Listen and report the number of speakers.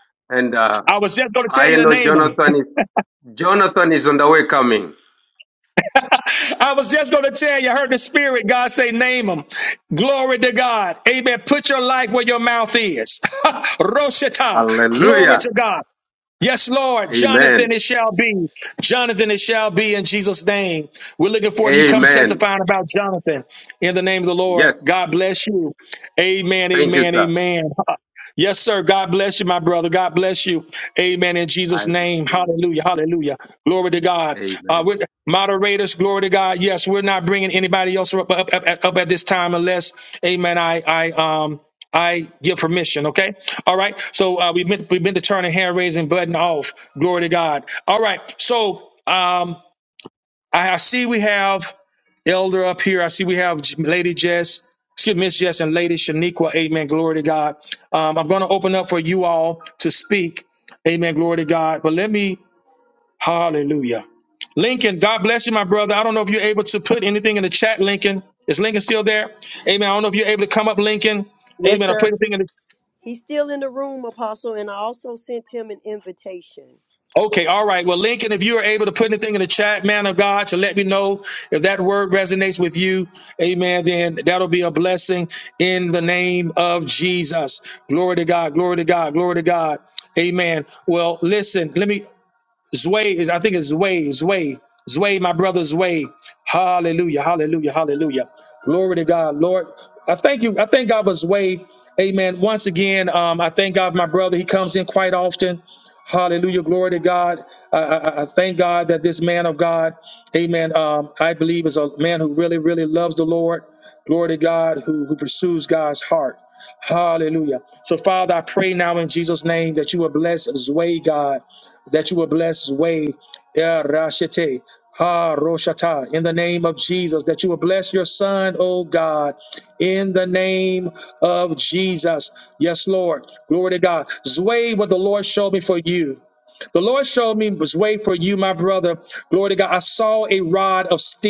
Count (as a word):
three